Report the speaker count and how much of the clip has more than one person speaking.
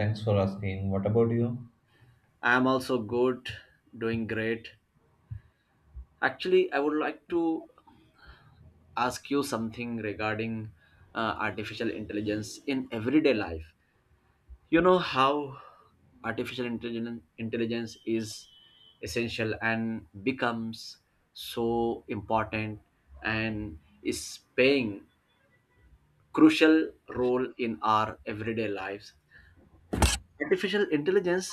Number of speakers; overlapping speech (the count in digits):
2, no overlap